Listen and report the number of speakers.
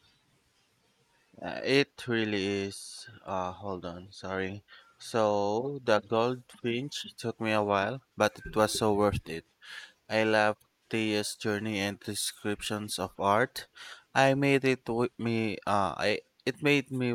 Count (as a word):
one